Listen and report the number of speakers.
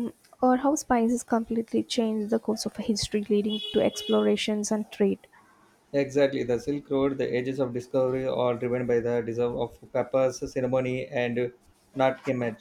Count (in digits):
2